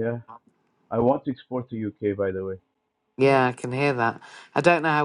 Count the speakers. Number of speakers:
two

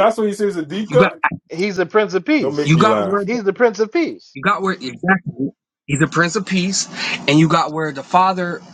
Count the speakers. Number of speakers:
three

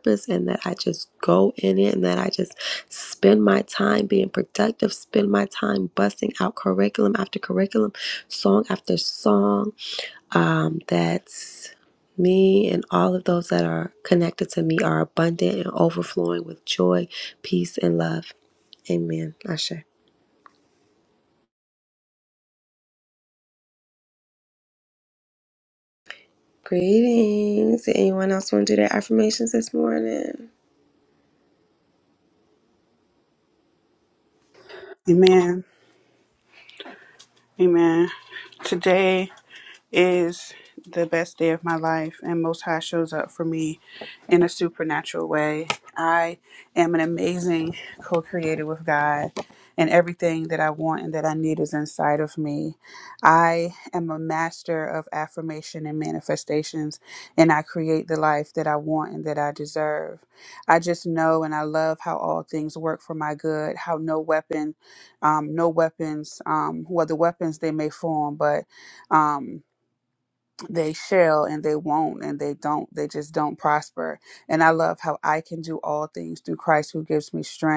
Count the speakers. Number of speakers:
two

